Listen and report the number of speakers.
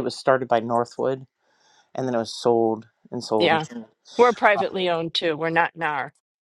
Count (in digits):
2